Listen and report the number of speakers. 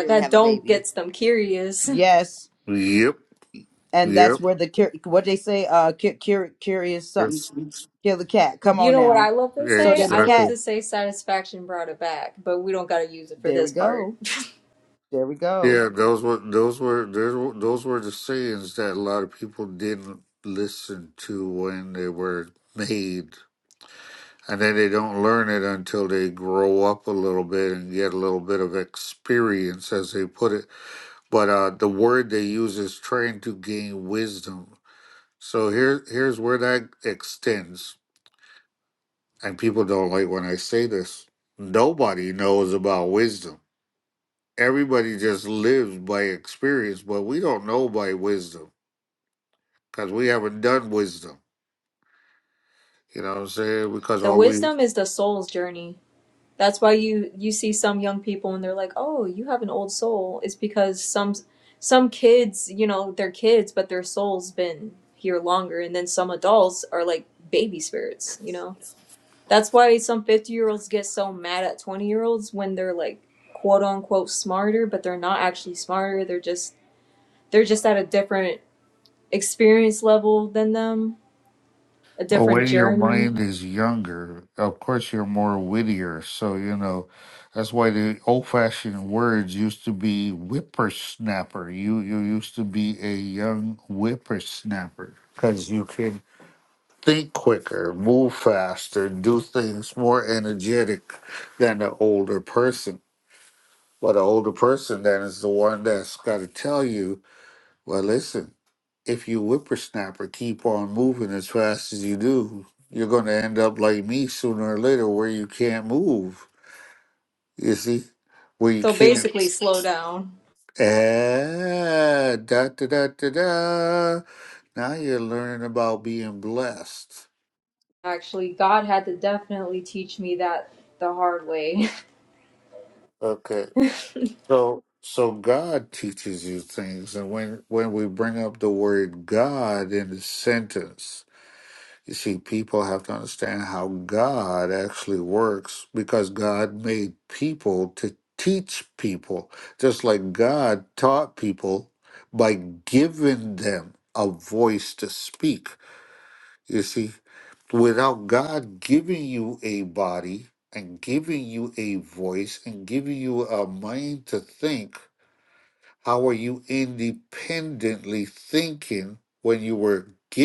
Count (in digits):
3